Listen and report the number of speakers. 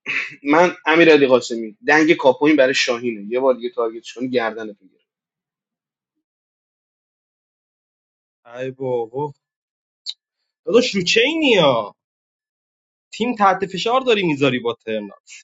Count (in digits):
2